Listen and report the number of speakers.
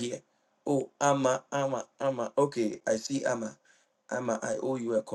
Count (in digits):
1